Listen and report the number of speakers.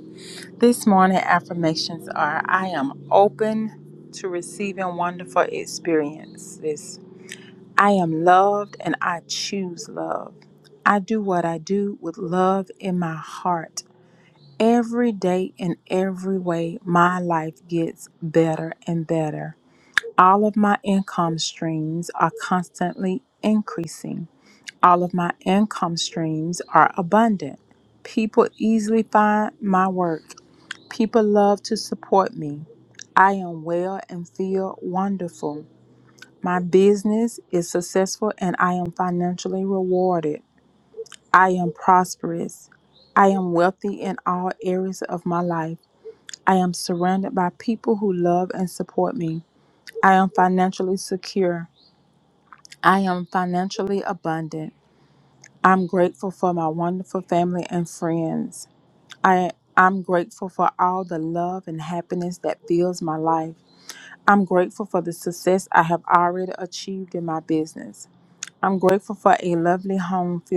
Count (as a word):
one